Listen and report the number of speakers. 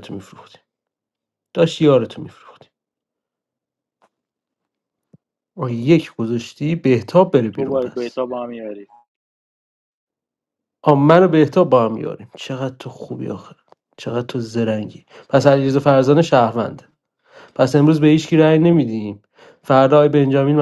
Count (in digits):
2